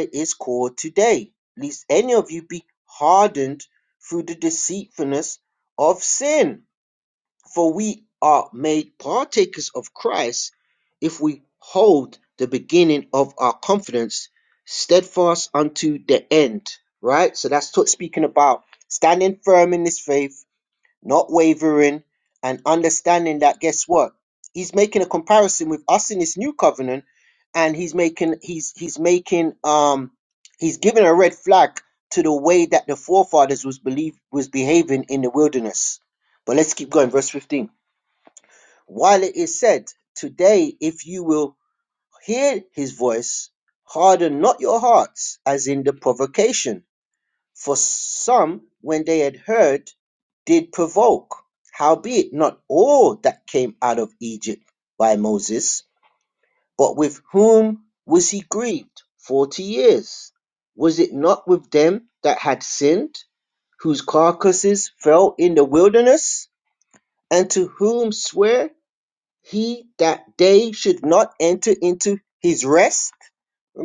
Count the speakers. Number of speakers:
one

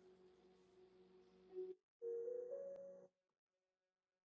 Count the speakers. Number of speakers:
zero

